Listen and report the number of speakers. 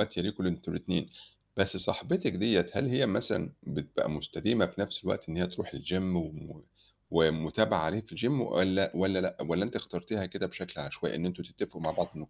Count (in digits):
1